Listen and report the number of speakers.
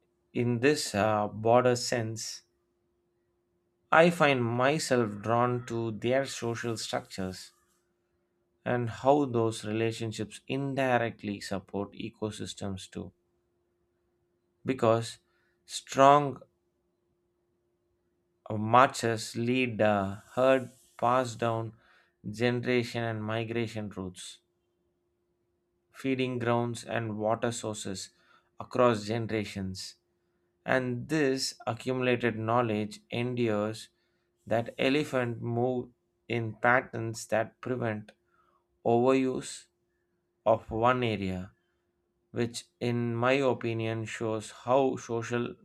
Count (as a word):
one